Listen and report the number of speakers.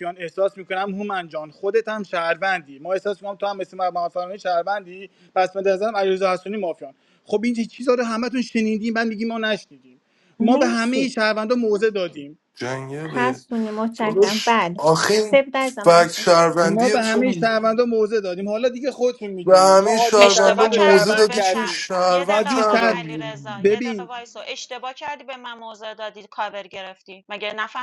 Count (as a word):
four